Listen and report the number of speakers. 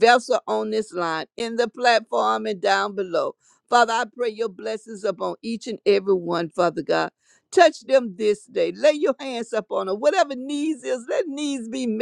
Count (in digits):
1